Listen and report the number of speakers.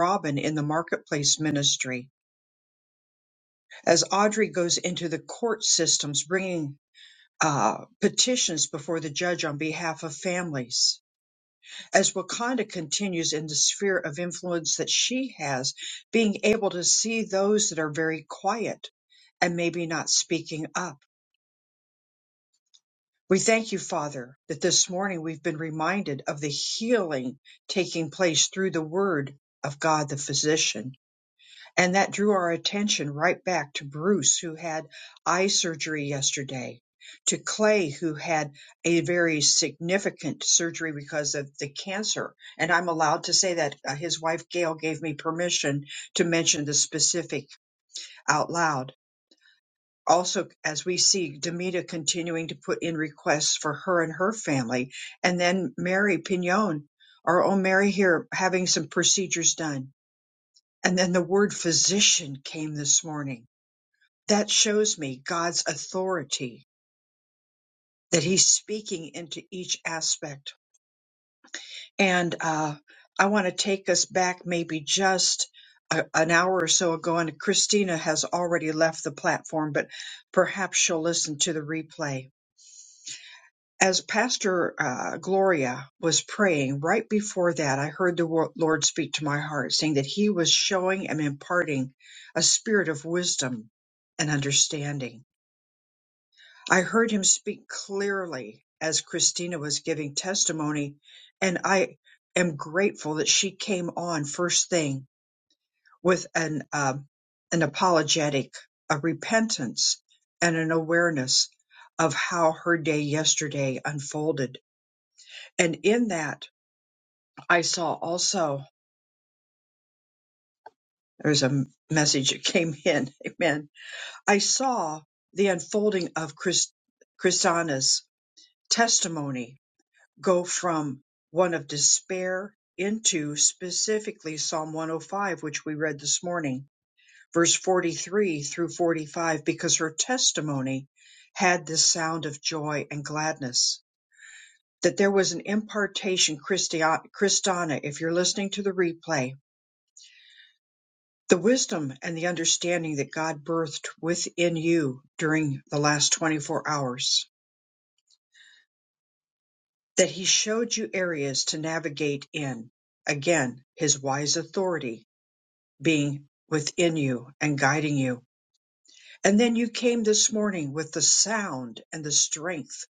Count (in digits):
1